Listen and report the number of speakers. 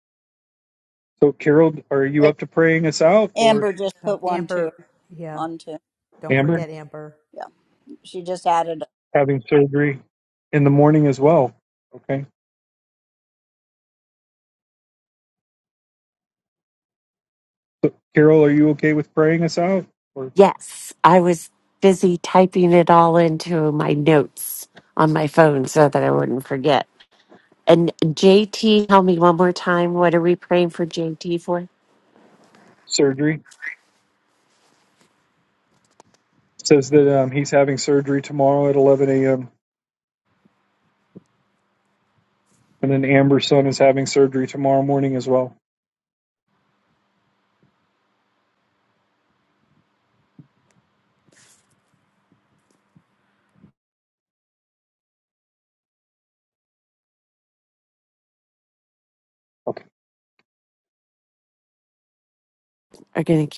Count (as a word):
four